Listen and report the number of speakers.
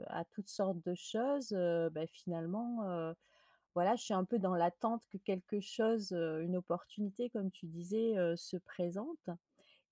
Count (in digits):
1